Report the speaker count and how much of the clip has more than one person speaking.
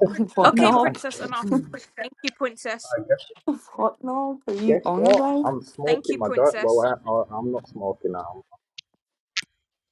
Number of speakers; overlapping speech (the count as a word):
three, about 23%